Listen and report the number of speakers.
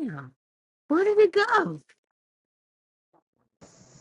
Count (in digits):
1